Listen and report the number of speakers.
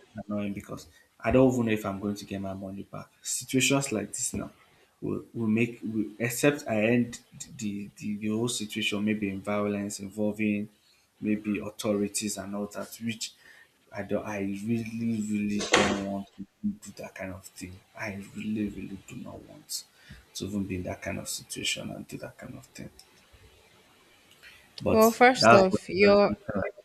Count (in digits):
2